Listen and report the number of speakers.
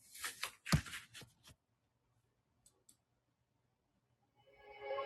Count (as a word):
zero